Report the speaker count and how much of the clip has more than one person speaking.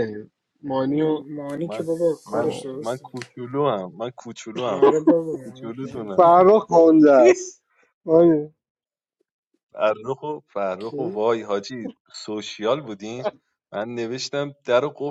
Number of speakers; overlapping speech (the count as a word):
four, about 18%